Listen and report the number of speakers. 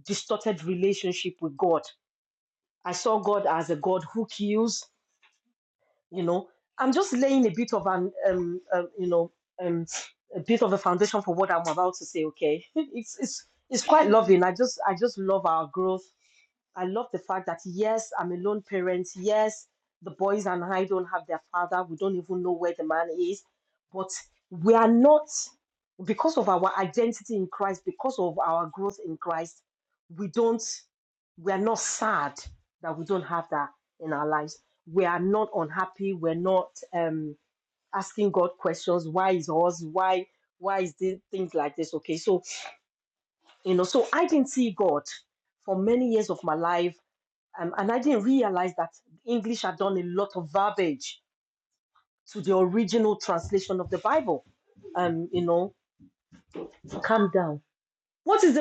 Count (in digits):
1